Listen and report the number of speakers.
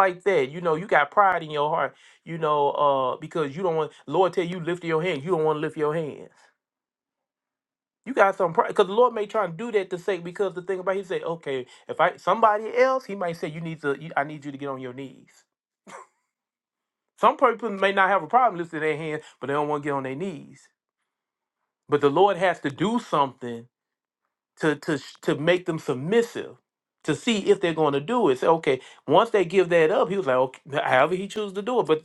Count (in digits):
1